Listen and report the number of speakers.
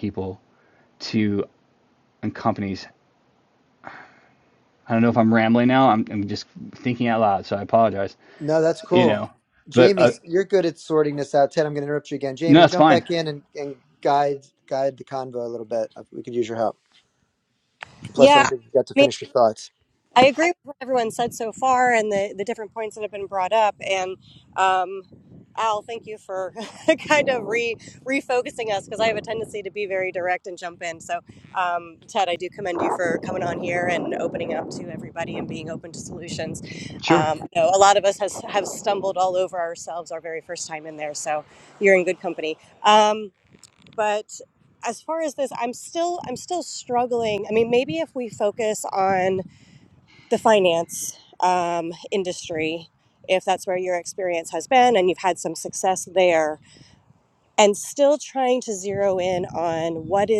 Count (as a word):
three